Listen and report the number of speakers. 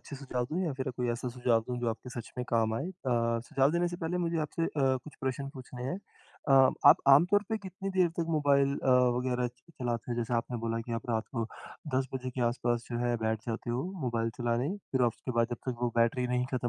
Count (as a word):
one